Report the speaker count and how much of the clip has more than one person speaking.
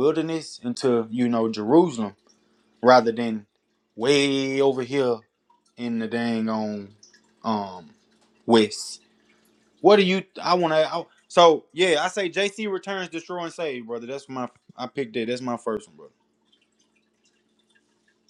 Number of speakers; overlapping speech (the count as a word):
one, no overlap